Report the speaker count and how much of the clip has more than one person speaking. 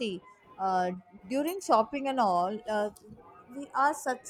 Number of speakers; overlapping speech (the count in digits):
1, no overlap